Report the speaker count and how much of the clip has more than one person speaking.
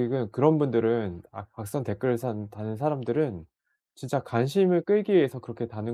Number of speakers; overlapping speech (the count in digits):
1, no overlap